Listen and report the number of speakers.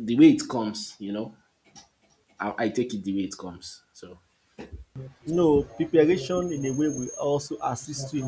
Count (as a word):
two